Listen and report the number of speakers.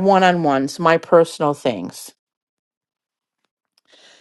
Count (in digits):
1